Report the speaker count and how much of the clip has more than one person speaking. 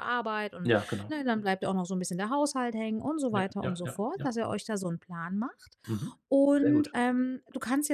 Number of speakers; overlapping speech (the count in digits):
2, about 16%